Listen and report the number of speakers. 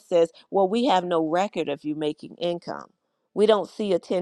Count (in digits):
1